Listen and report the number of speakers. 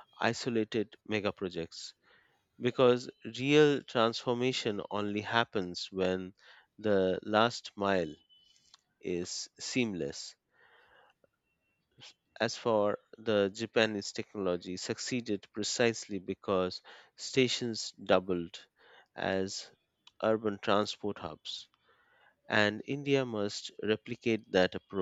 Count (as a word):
one